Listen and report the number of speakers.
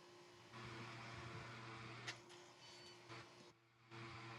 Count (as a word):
zero